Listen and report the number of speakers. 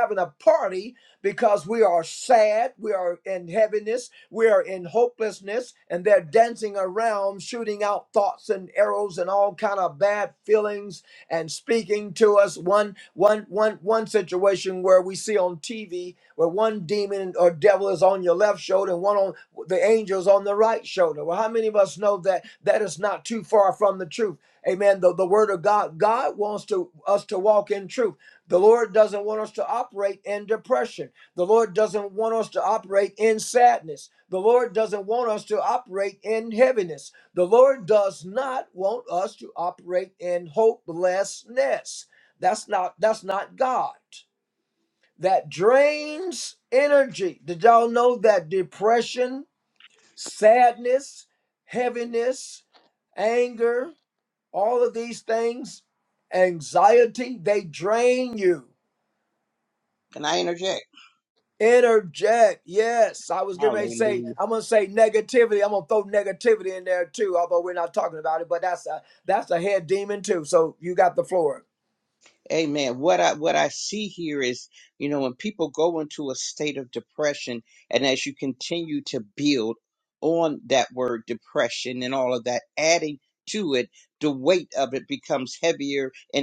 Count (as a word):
two